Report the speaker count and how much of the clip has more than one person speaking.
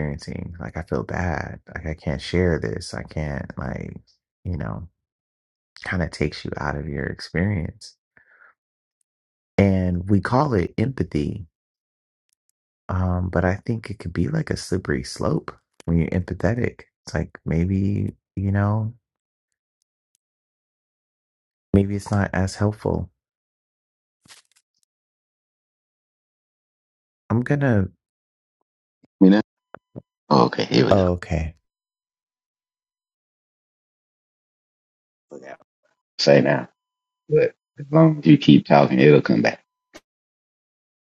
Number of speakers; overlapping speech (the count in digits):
2, under 1%